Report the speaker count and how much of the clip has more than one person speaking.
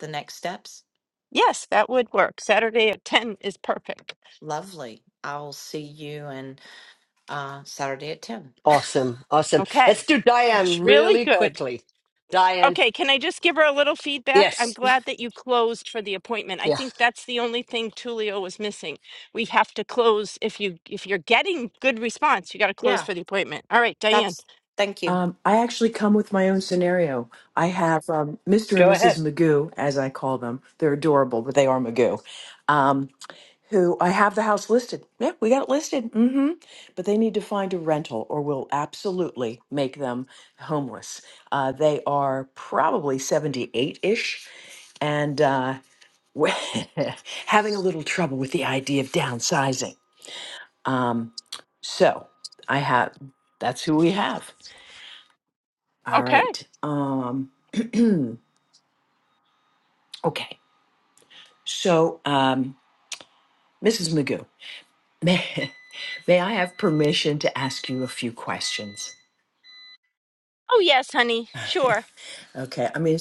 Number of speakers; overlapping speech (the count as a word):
four, about 5%